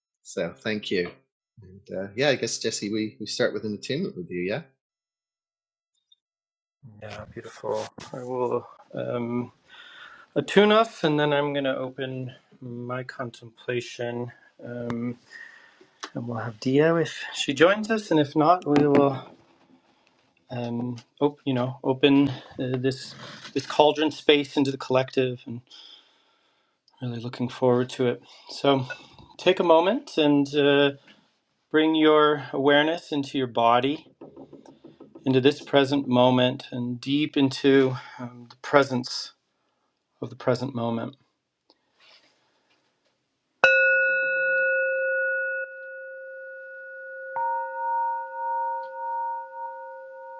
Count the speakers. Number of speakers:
2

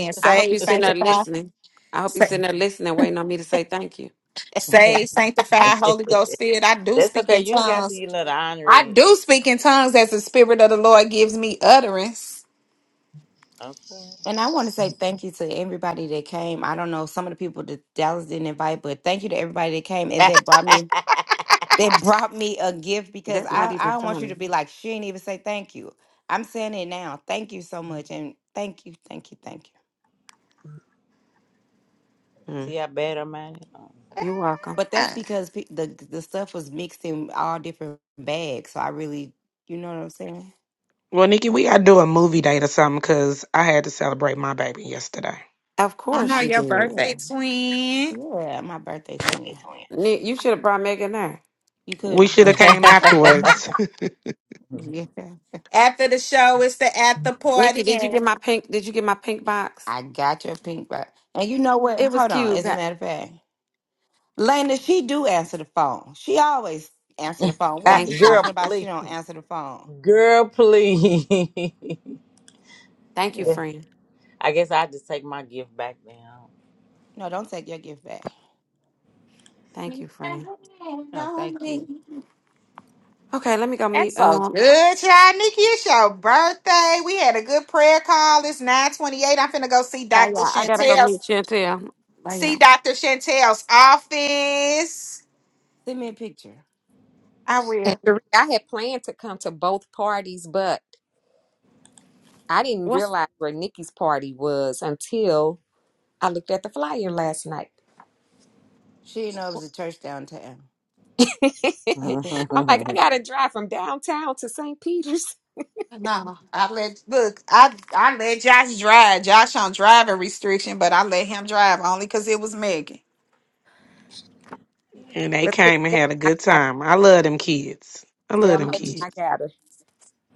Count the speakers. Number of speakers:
6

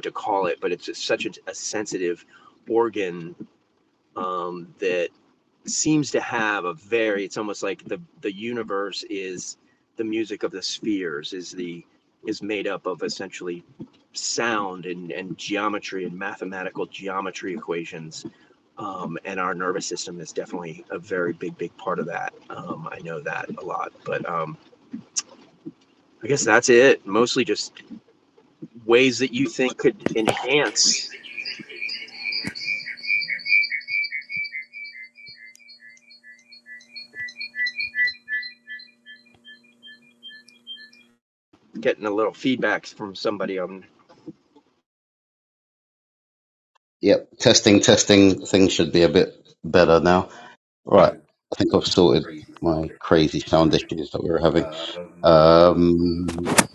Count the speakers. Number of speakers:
3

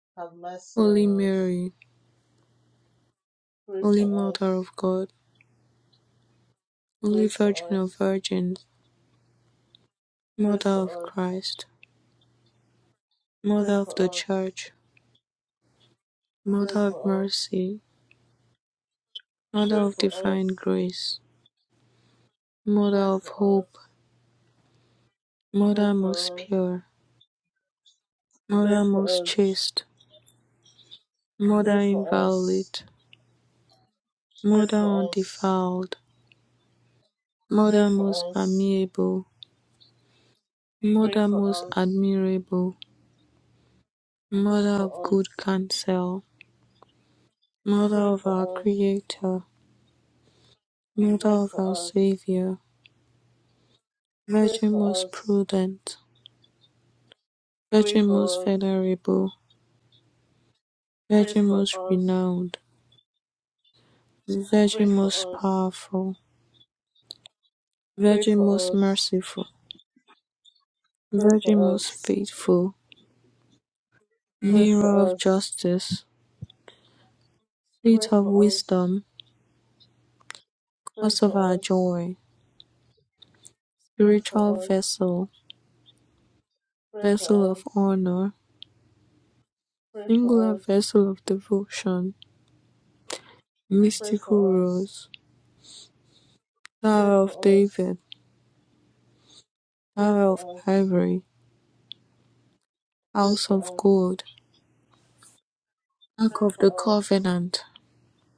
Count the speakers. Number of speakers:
2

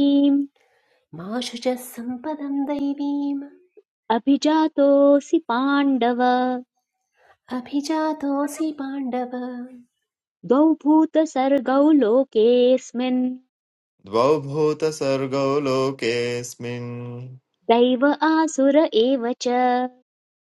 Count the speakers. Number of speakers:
3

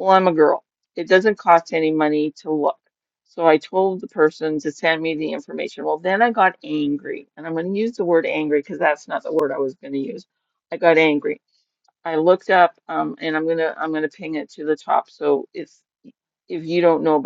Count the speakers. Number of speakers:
1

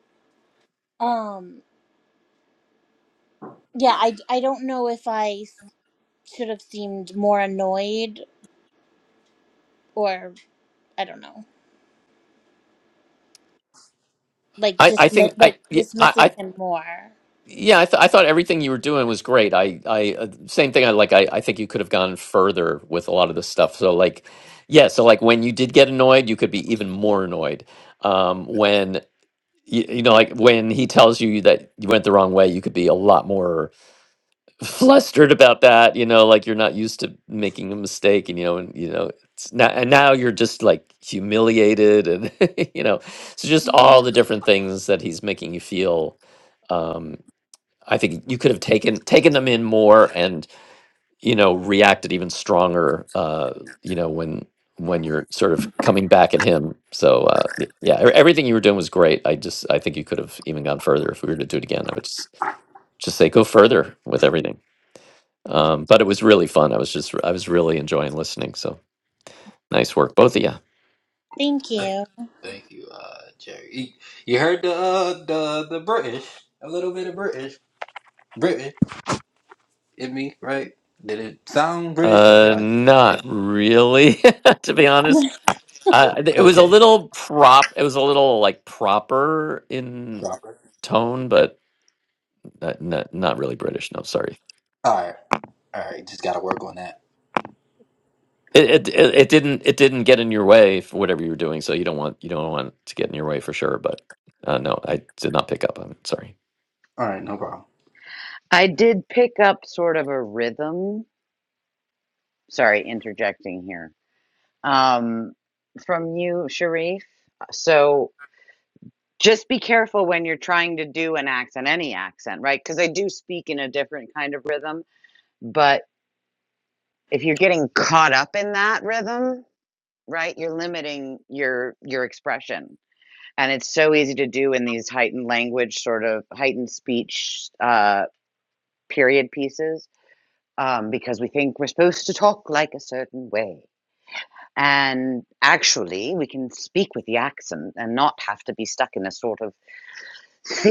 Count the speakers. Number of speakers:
4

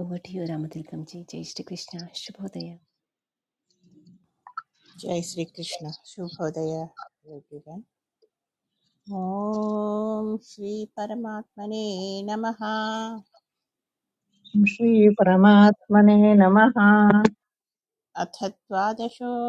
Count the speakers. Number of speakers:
3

